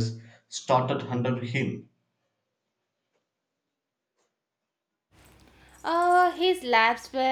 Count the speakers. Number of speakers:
2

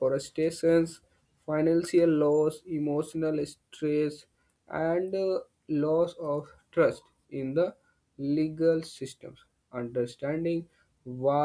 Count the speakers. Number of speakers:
1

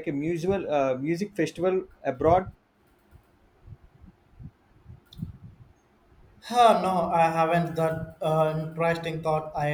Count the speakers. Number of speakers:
2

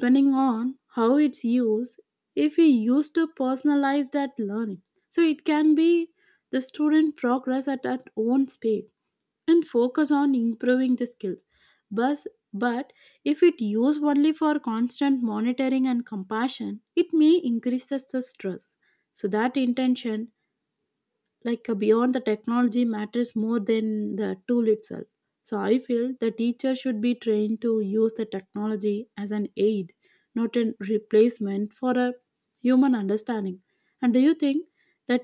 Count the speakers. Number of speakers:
1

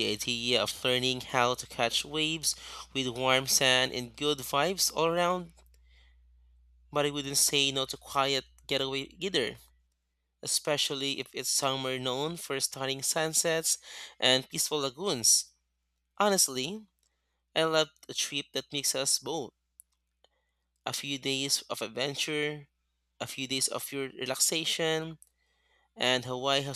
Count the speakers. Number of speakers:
1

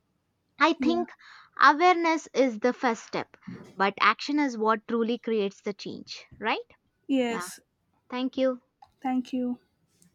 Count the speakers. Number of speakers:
2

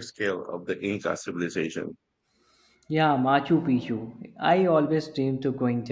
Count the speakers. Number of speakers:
2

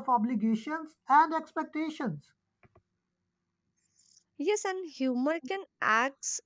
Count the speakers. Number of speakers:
2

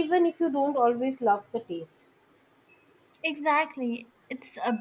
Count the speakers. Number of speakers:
2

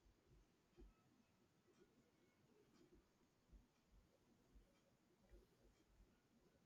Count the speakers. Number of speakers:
0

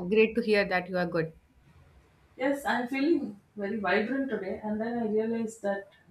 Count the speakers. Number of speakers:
2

